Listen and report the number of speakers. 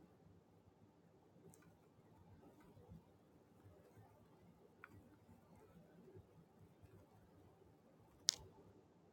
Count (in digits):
0